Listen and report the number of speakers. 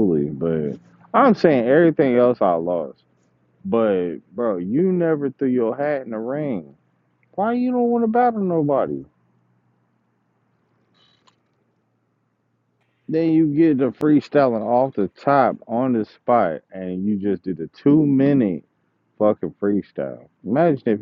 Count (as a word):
one